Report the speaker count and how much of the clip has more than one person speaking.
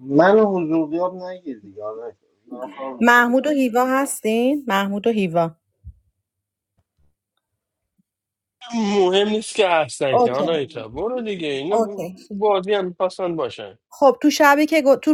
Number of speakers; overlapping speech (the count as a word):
three, about 7%